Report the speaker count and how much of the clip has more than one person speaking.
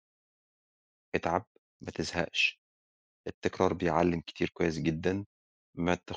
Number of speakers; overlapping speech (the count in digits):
1, no overlap